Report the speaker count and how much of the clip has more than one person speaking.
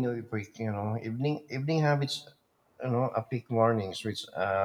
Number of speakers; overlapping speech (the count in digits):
1, no overlap